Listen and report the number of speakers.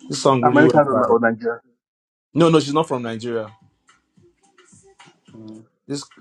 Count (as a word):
two